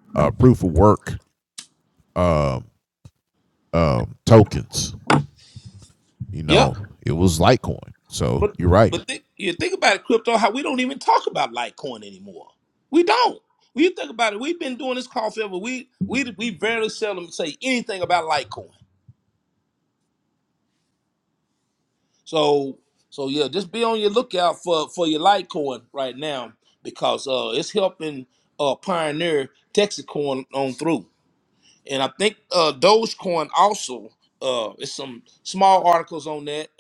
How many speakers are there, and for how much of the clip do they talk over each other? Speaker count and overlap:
two, about 1%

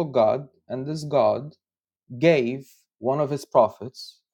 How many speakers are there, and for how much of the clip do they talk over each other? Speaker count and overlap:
one, no overlap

